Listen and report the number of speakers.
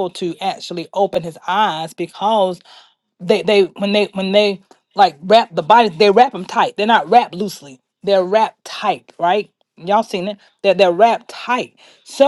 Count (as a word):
one